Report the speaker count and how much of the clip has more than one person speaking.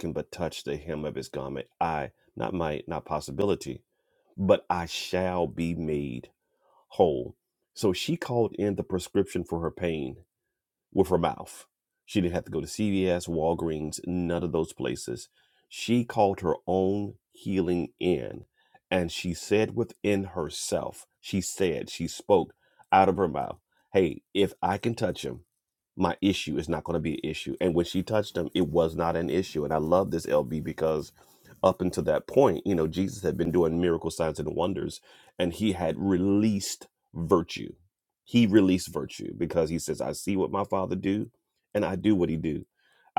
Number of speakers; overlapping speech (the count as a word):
one, no overlap